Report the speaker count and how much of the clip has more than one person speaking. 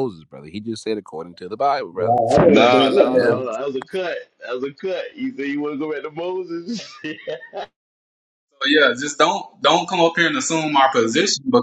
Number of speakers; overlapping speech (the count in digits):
3, about 10%